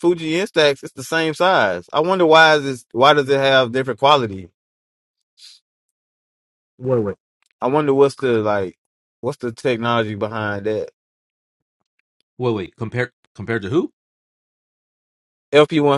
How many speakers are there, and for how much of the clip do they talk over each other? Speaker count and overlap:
2, no overlap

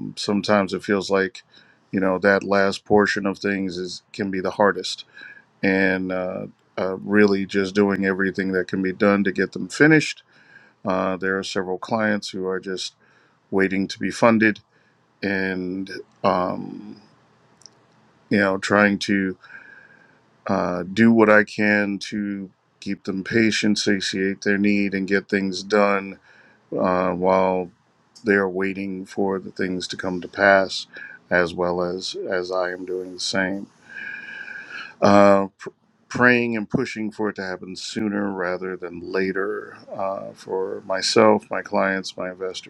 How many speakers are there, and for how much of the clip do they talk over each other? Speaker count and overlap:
1, no overlap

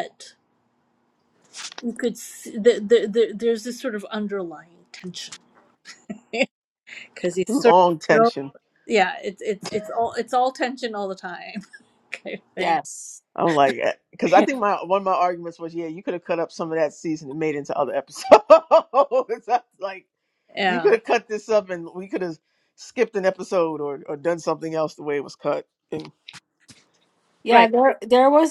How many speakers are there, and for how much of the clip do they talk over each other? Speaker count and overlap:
3, about 4%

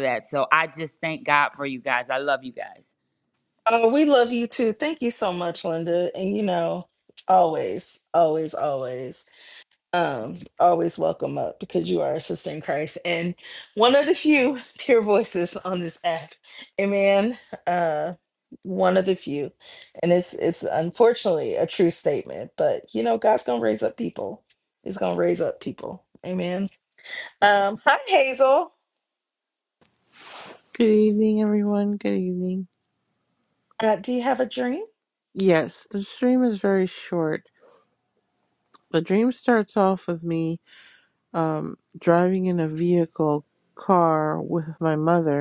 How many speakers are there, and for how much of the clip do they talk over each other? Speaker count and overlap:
3, no overlap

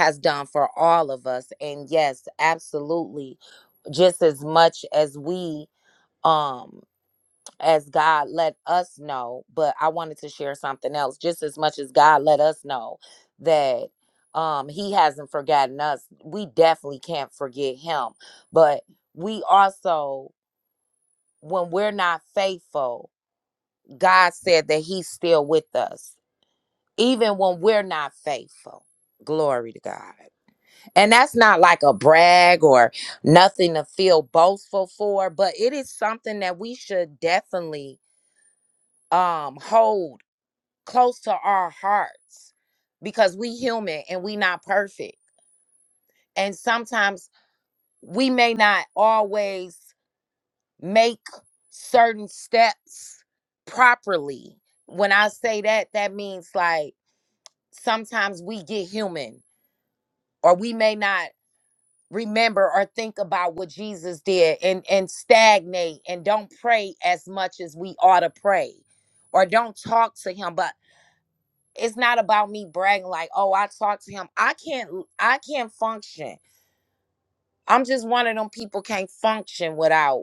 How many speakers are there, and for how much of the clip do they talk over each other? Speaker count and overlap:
1, no overlap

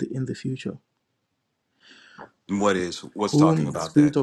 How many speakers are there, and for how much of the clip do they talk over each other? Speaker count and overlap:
2, about 21%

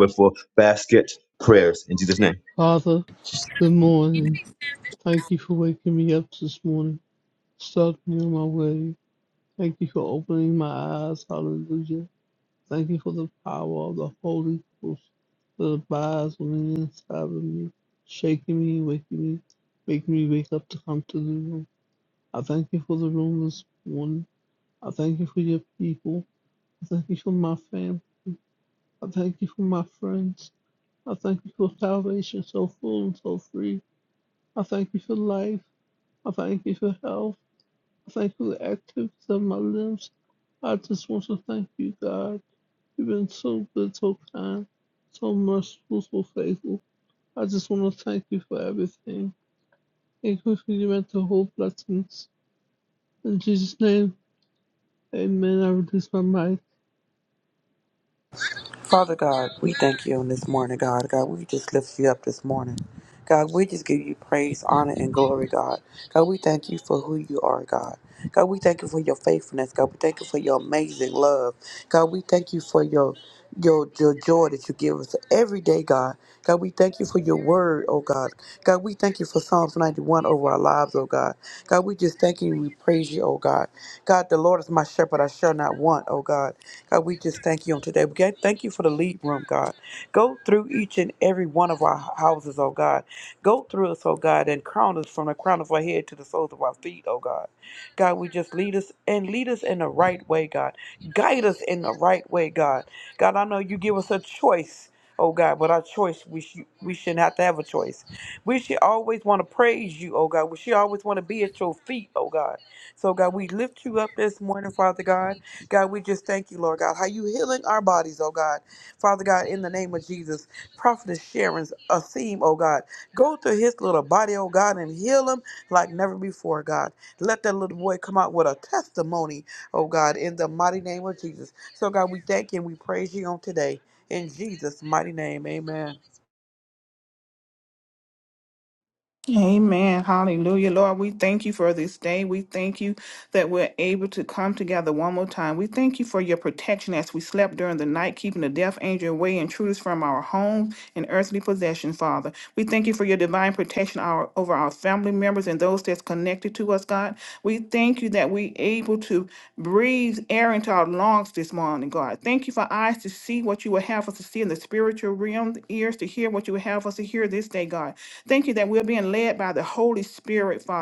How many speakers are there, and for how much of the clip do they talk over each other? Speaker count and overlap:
4, no overlap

